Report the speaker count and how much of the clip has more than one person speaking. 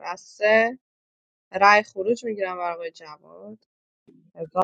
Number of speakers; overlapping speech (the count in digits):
1, no overlap